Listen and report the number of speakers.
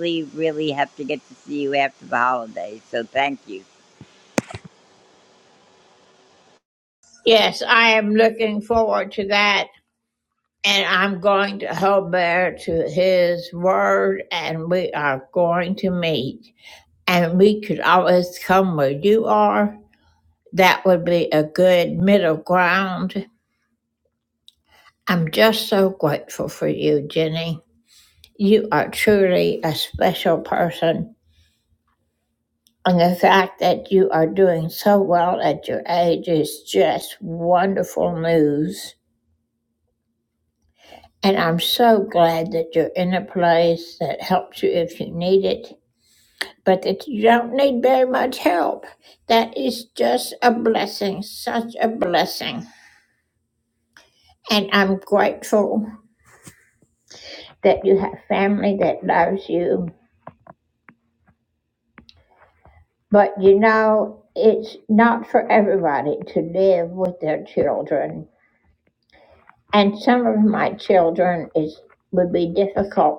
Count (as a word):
two